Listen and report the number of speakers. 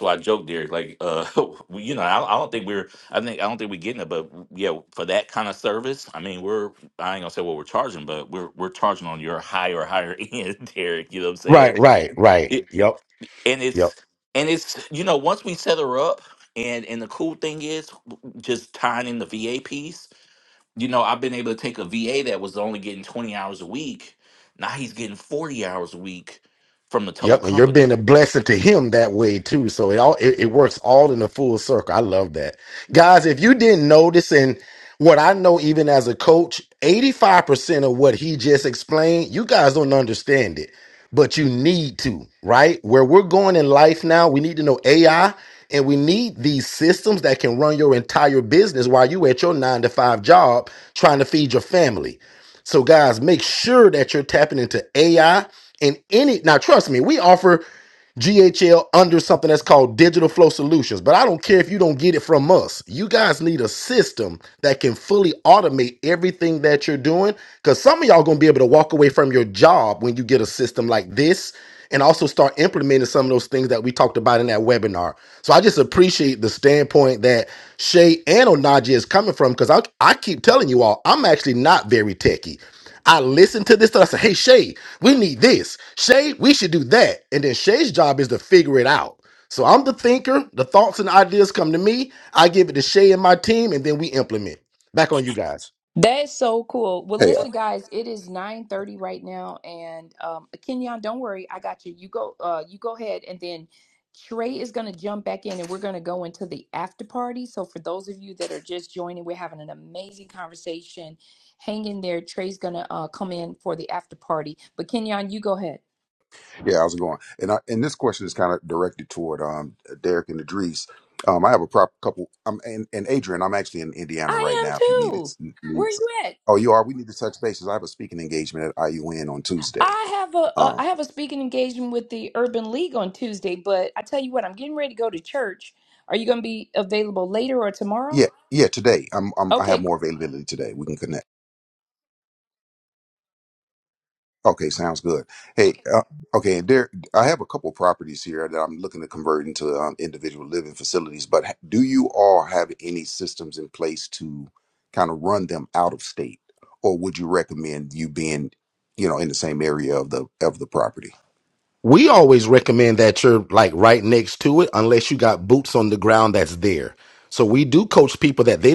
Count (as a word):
four